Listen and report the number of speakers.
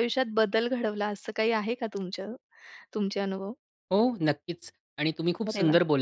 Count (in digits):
2